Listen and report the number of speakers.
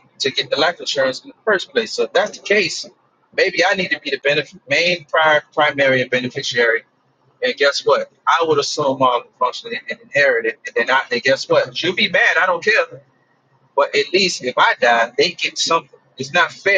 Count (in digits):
1